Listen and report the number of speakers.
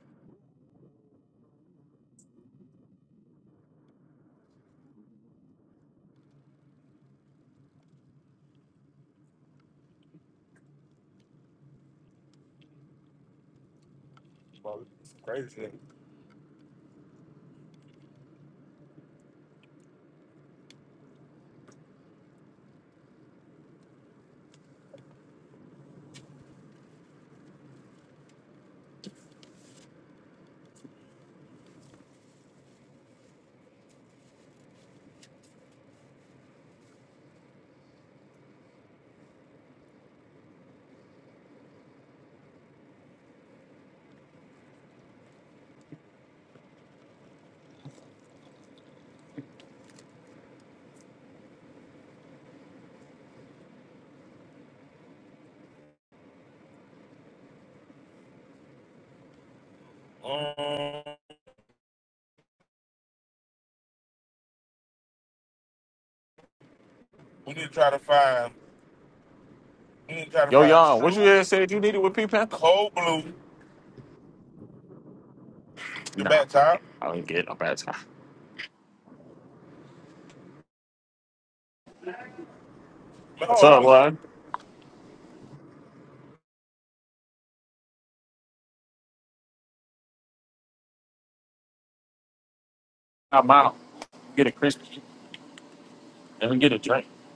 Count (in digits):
2